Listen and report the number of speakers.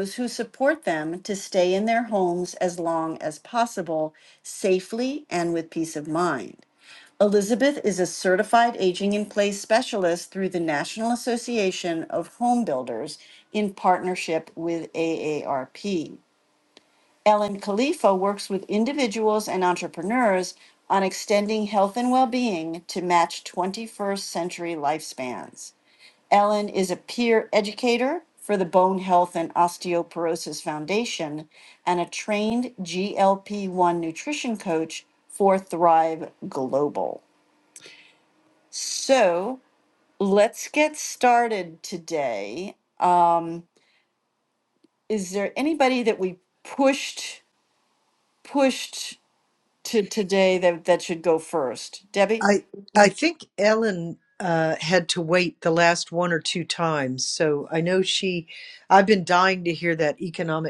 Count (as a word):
two